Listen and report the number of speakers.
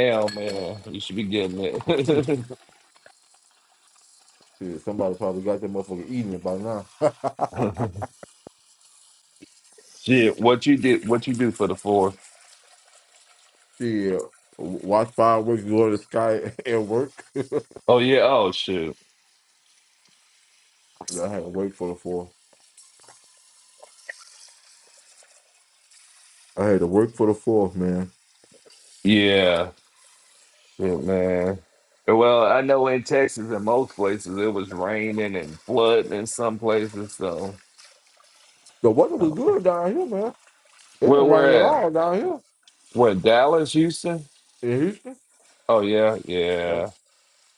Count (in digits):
2